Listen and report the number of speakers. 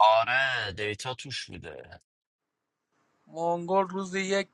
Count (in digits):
2